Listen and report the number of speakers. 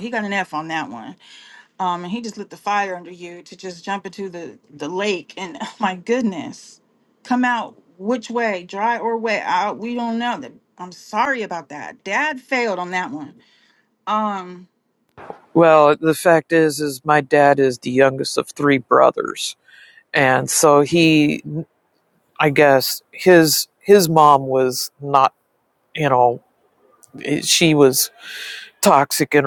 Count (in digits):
2